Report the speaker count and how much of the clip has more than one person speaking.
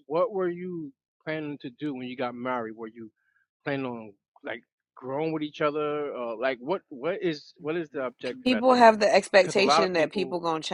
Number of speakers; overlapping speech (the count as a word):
two, about 14%